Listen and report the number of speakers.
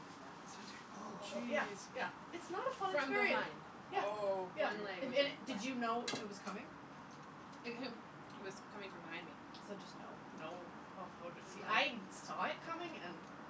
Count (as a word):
three